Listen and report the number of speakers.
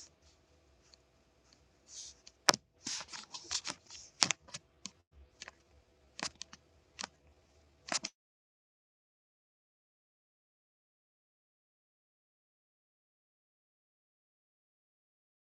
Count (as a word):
zero